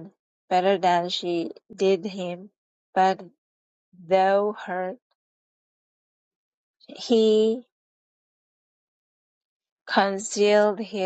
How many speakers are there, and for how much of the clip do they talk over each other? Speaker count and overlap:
1, no overlap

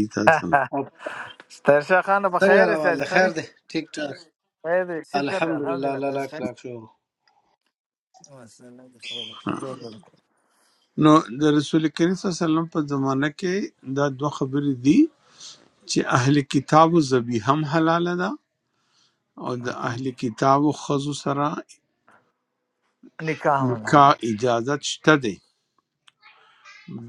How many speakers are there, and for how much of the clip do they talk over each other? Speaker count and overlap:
3, about 10%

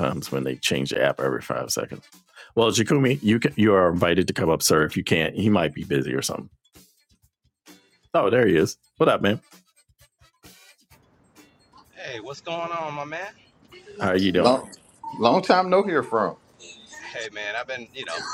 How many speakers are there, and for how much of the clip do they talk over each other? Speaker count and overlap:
3, about 2%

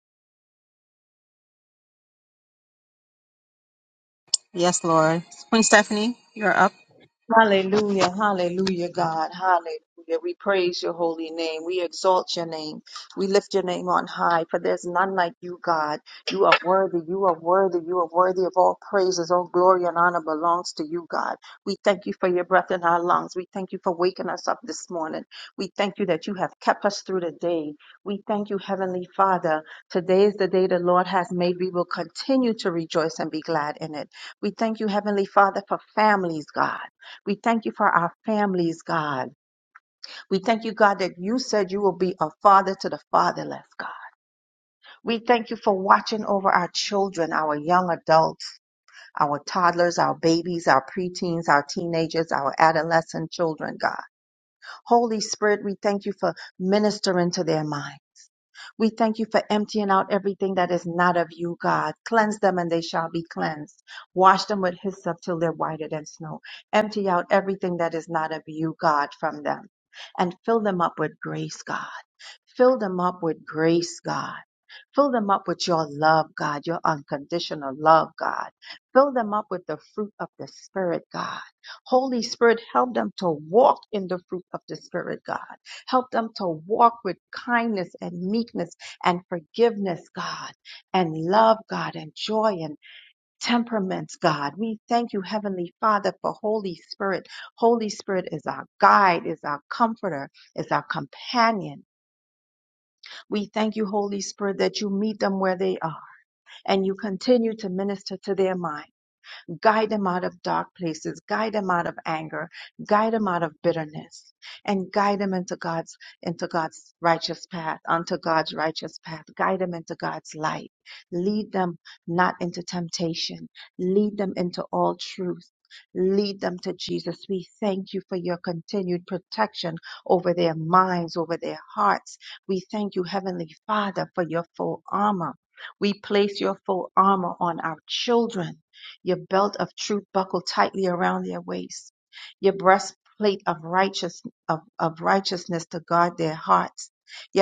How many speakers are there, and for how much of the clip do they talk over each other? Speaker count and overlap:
2, no overlap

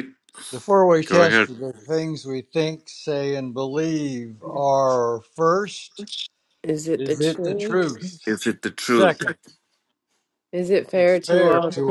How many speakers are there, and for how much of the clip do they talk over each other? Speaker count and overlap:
3, about 21%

